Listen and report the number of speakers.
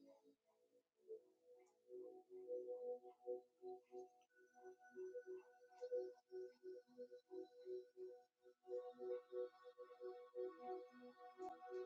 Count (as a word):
zero